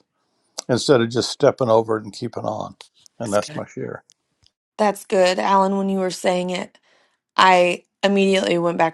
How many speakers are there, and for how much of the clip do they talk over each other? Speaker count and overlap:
two, about 2%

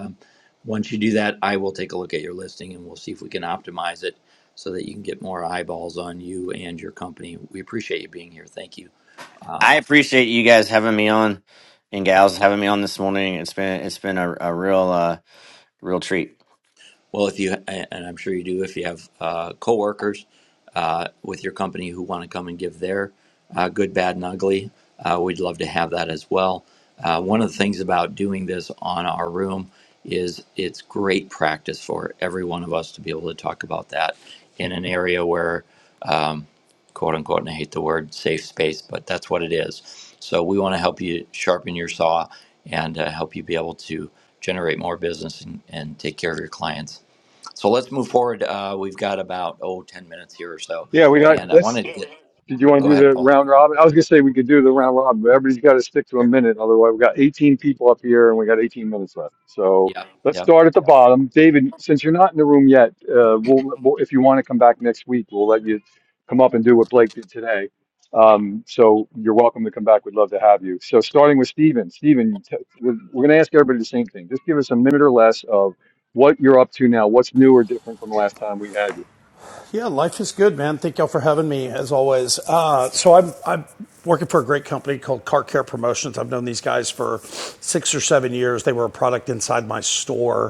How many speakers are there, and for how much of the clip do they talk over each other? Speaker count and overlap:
four, about 1%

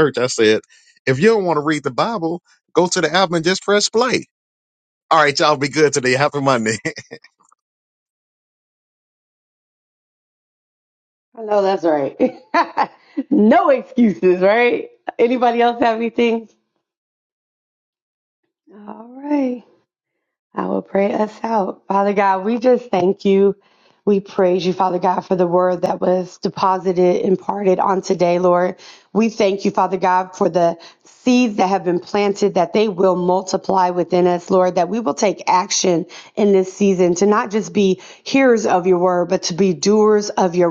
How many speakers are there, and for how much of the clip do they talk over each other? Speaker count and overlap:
two, no overlap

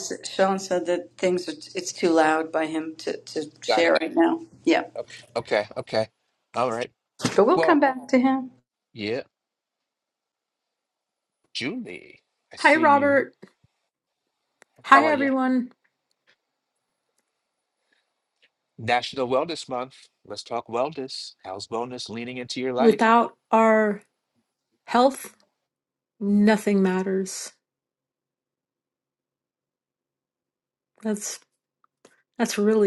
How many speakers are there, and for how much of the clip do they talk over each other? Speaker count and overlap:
three, about 5%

